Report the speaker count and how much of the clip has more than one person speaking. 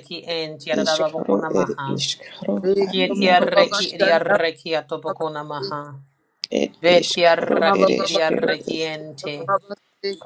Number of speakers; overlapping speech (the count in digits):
3, about 50%